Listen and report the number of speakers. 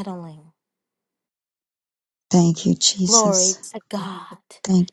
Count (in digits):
2